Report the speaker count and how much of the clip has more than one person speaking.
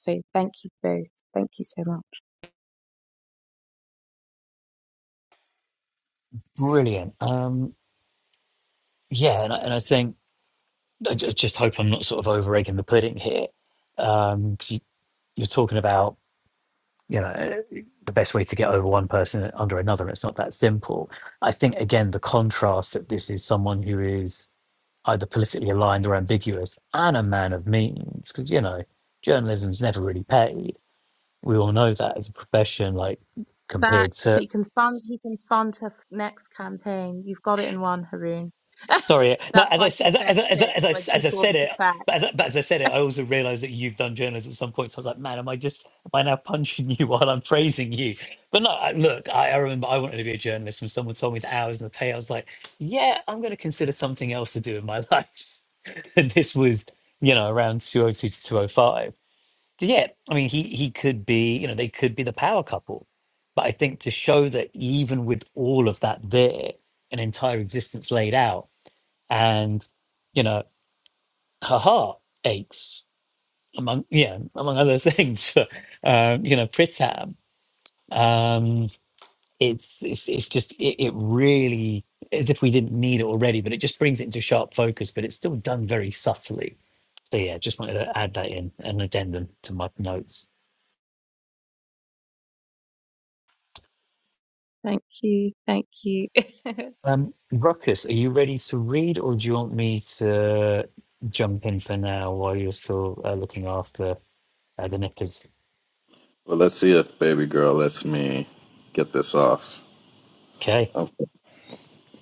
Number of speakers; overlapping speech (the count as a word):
three, about 3%